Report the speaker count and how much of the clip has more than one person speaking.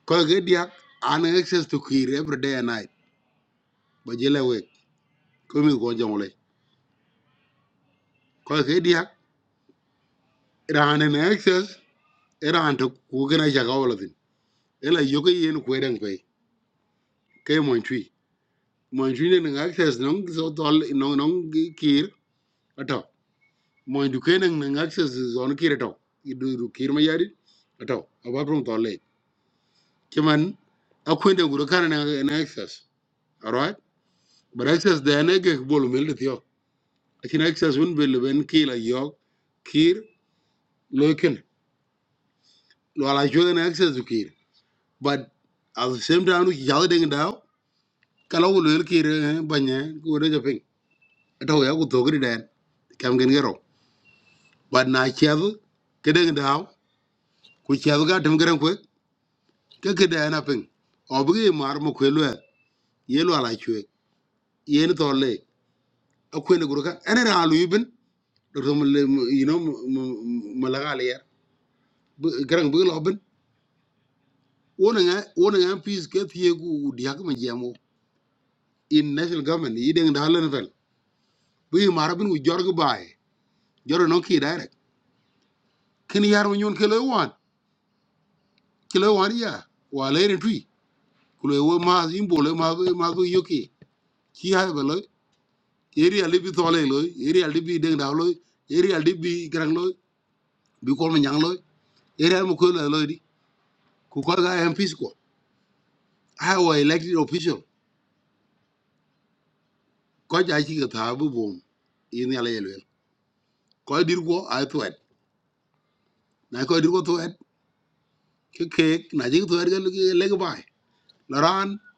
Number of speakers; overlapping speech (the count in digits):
1, no overlap